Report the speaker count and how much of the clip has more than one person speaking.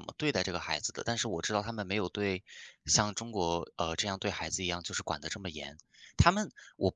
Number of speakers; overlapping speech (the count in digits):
1, no overlap